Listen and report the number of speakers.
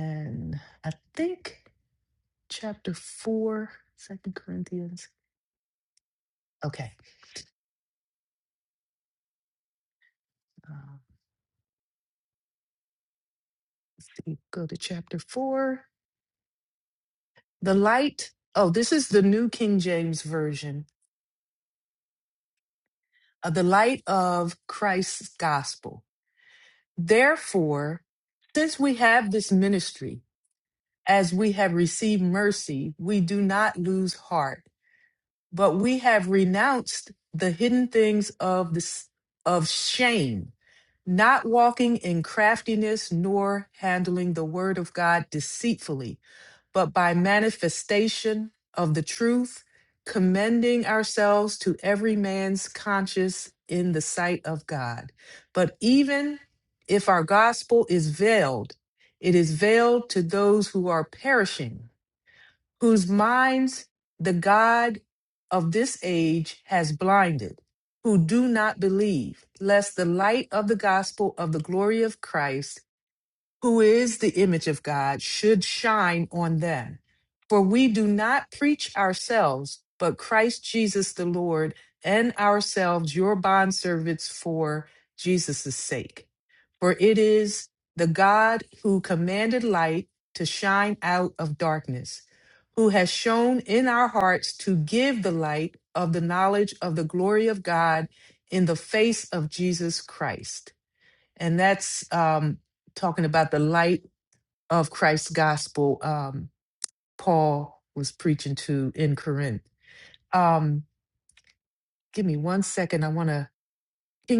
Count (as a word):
one